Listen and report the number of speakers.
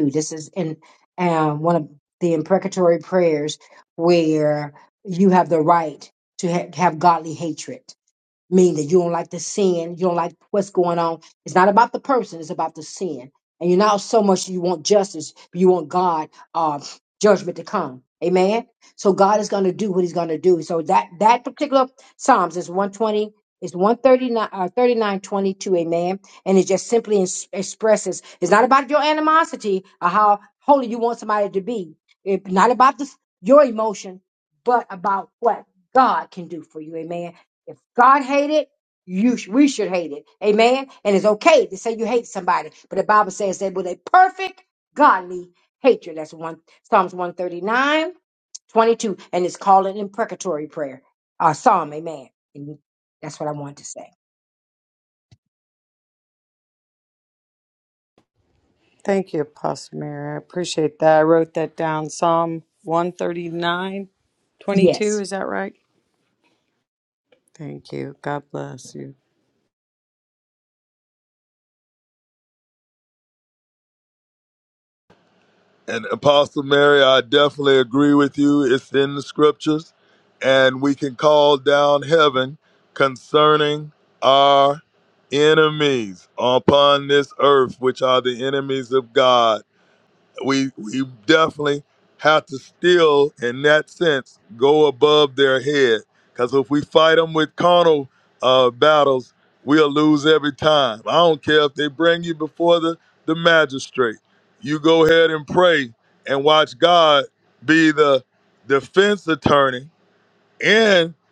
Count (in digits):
3